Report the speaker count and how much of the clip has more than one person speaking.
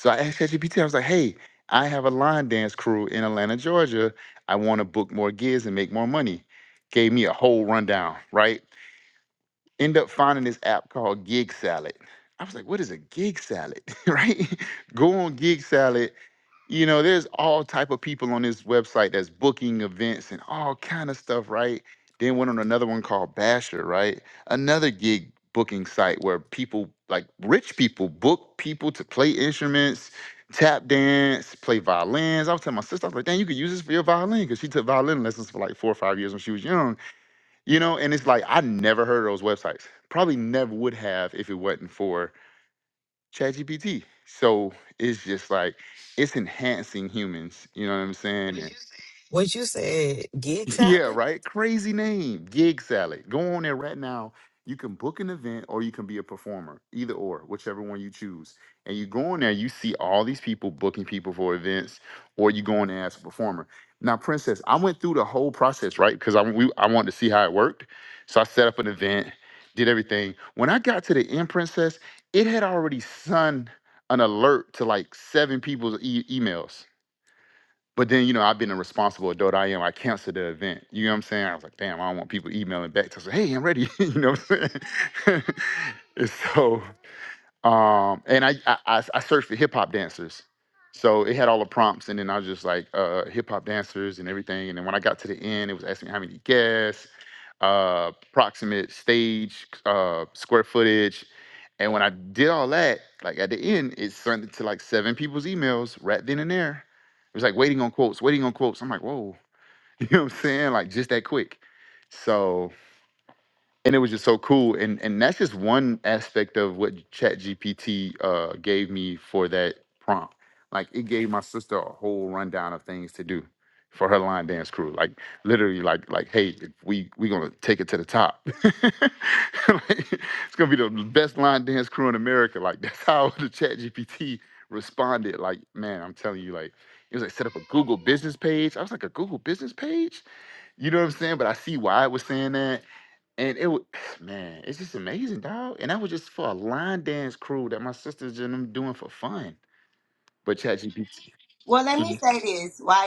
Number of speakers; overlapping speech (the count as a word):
three, about 1%